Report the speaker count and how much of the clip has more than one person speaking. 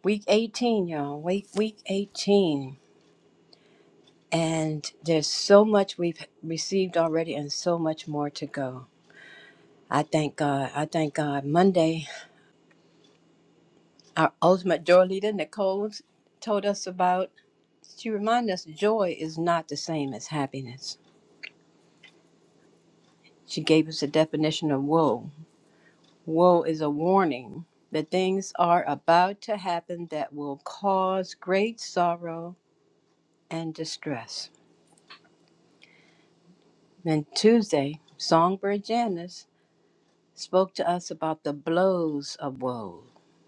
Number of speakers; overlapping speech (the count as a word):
one, no overlap